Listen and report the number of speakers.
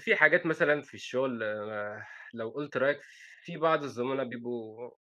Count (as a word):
one